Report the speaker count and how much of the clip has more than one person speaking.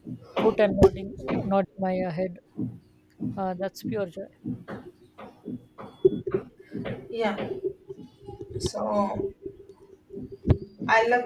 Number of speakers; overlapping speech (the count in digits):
2, no overlap